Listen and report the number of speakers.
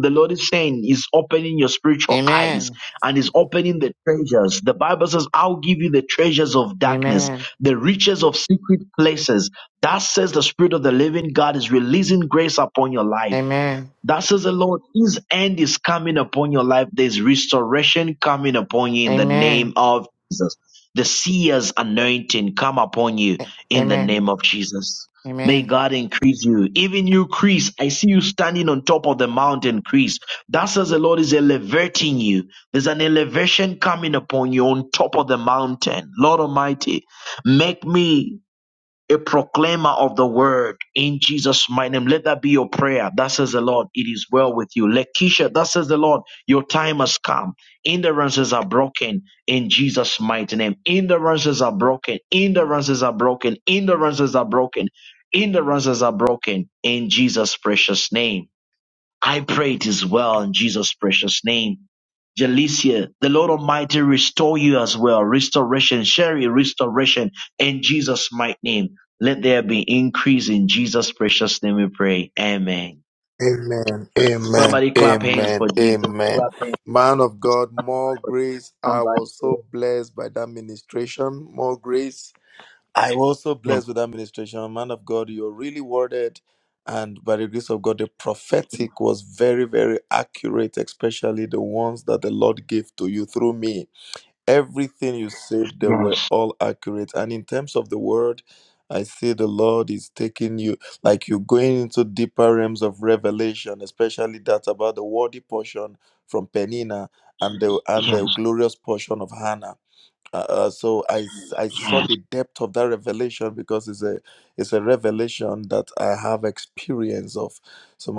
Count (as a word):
three